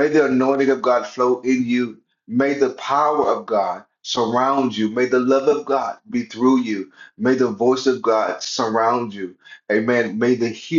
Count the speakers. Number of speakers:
1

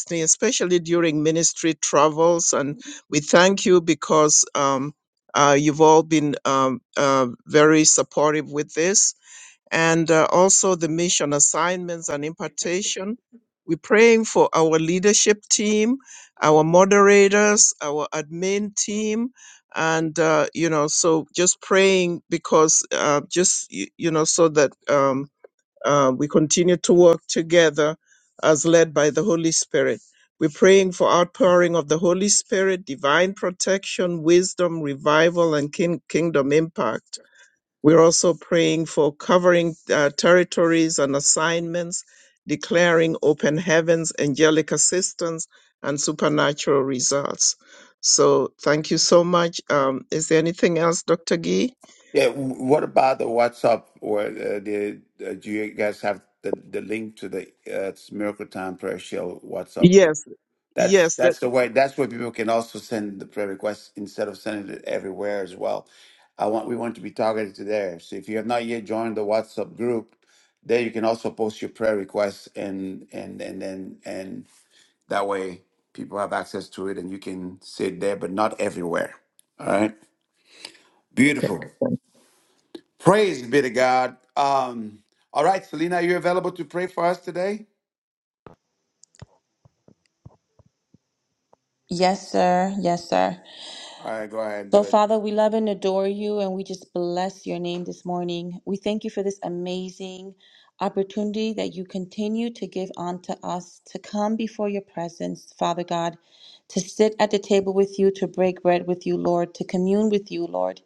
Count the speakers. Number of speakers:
3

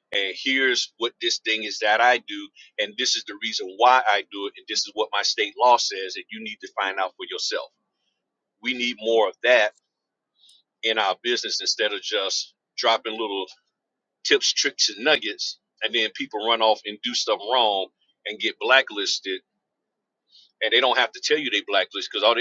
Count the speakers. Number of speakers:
1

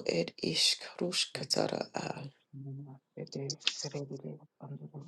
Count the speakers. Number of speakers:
2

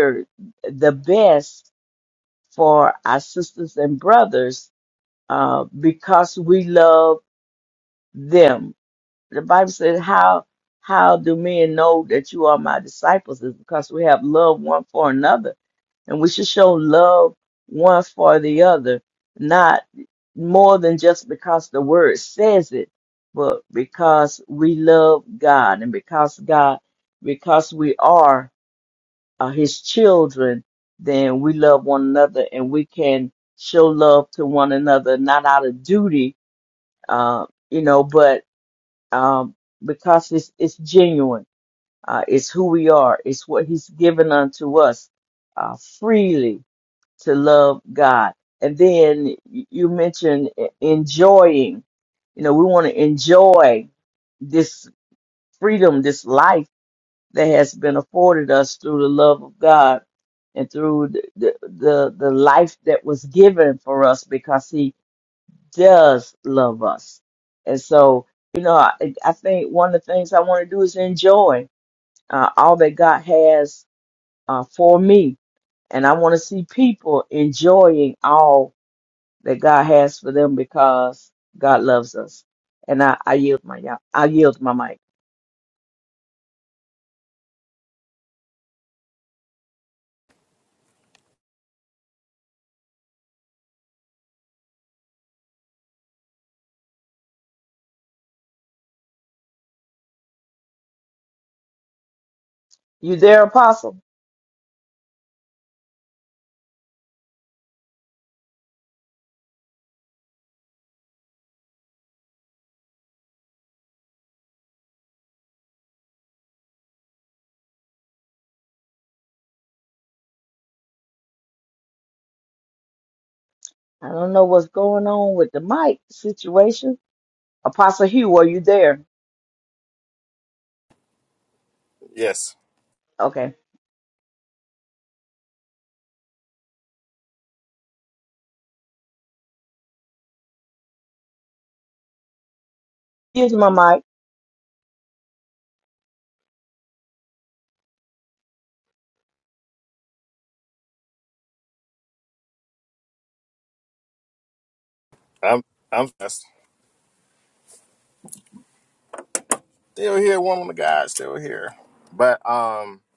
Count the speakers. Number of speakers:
2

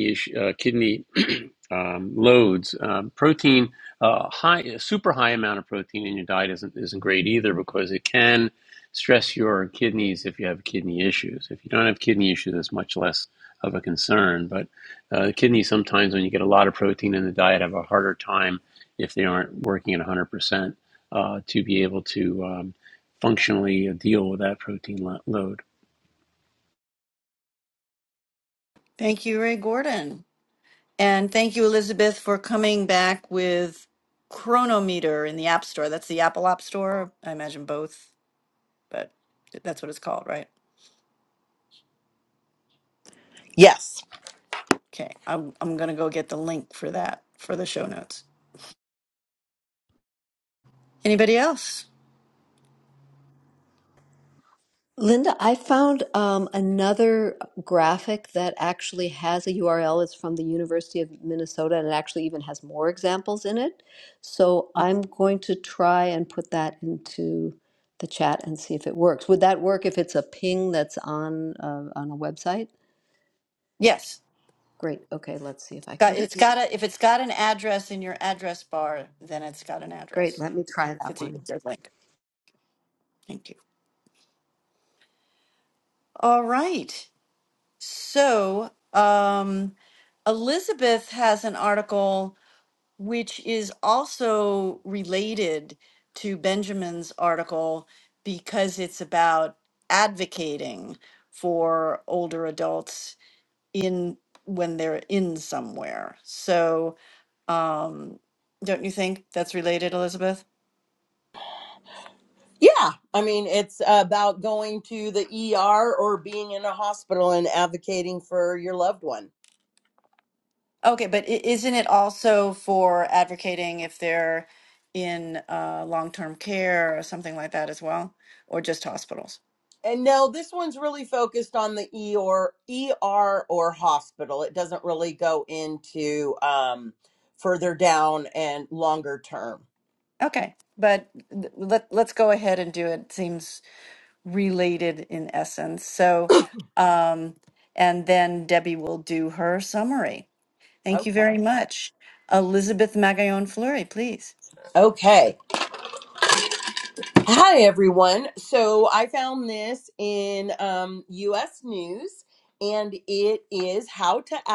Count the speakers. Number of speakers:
4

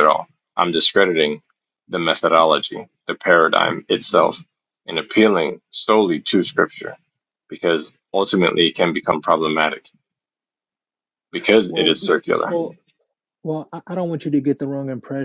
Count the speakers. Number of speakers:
2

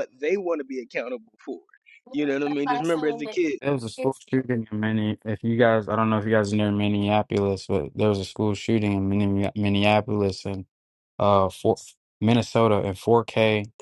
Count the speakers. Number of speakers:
2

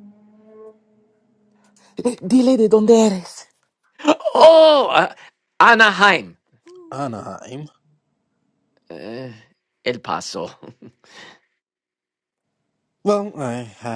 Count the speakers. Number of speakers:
3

